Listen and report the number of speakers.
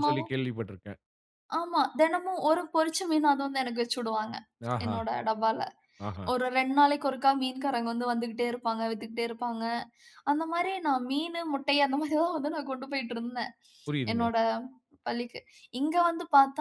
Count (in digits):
2